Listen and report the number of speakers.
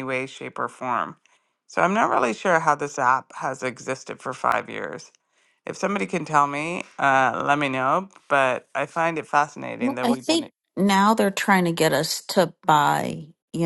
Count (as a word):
two